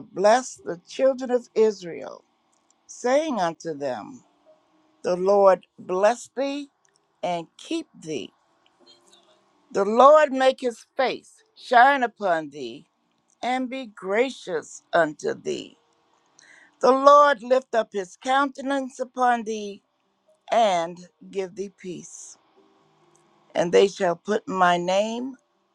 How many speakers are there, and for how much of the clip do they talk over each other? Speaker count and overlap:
1, no overlap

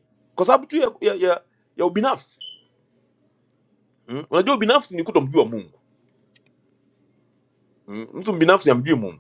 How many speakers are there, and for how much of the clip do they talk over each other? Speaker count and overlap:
1, no overlap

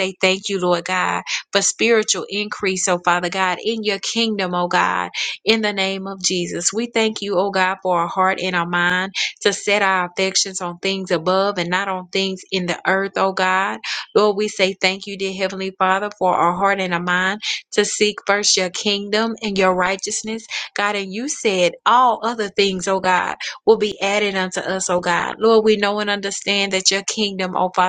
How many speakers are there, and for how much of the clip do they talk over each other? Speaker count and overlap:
1, no overlap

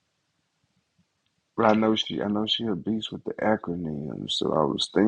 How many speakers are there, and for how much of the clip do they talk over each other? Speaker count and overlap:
1, no overlap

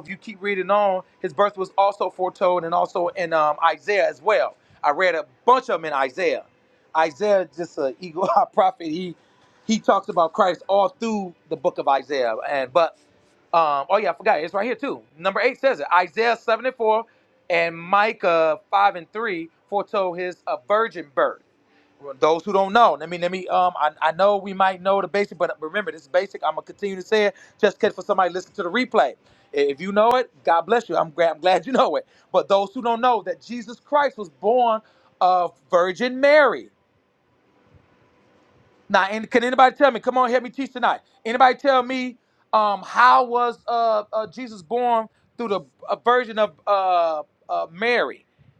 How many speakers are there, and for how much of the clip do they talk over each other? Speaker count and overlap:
1, no overlap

